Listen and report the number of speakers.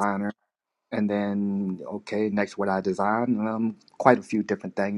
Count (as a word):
one